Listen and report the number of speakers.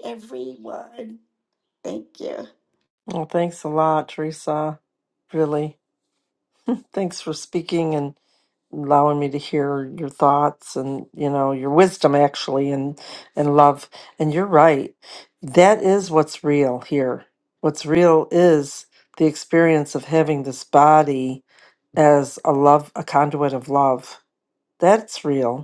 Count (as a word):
two